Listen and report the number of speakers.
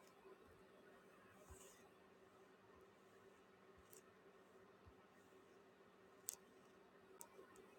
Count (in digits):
0